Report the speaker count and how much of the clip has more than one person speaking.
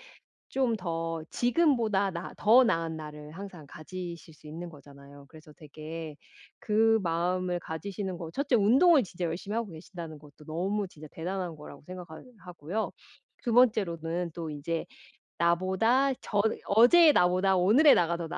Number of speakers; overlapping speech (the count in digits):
1, no overlap